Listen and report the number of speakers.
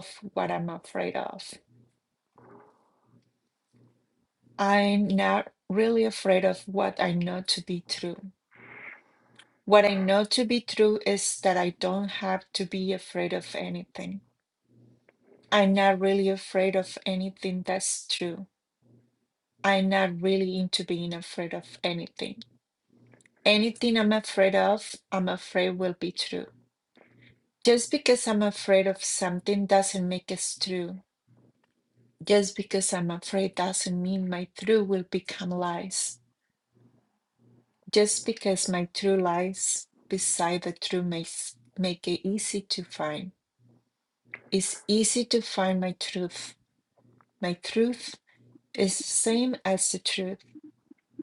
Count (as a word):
one